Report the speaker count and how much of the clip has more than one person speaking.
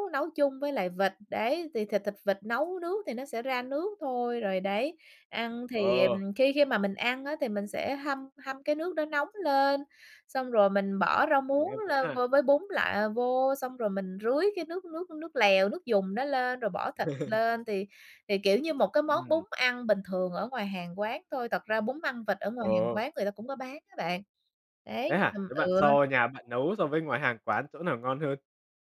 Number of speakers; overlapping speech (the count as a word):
two, about 8%